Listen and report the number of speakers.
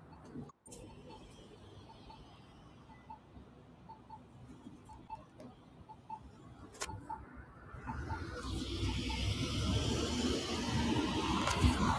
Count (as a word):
zero